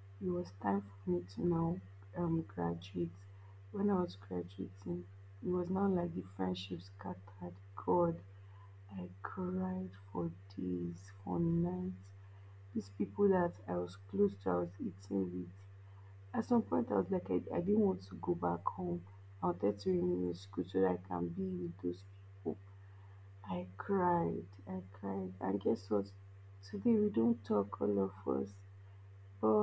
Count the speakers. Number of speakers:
one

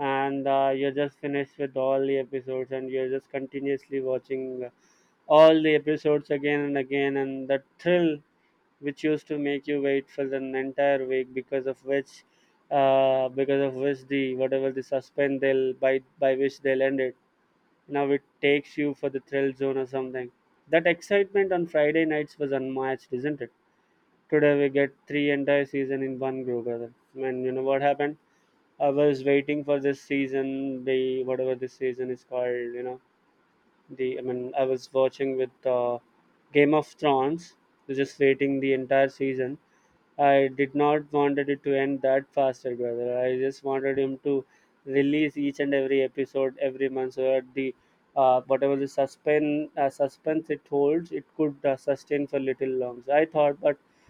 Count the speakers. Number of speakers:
one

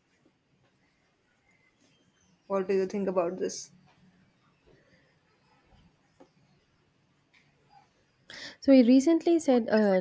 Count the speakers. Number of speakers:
two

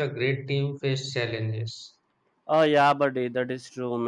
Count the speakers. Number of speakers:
two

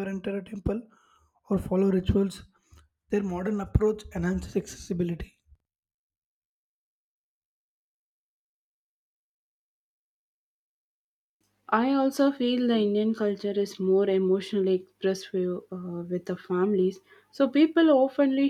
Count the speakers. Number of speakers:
two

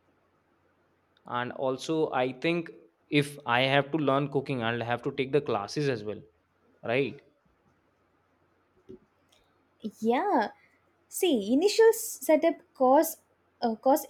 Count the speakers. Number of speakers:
two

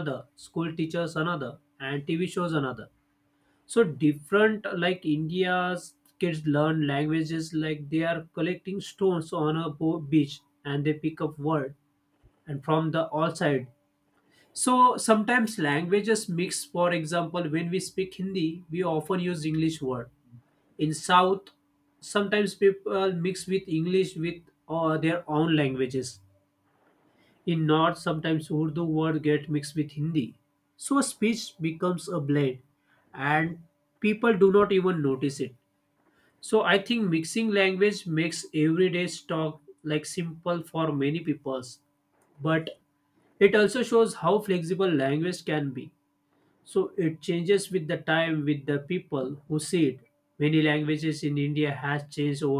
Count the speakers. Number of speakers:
one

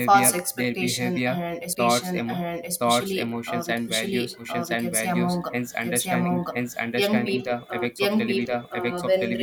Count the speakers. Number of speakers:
two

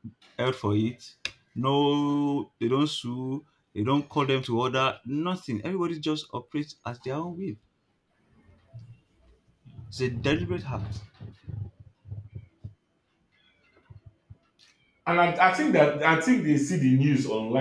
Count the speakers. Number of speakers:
two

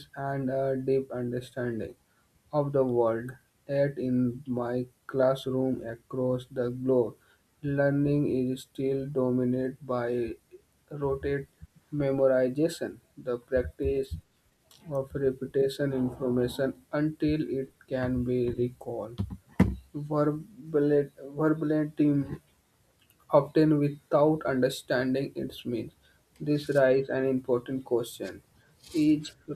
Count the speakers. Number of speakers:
one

